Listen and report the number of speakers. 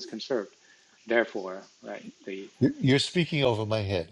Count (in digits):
2